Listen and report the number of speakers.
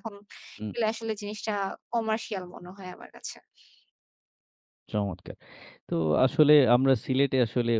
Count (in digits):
2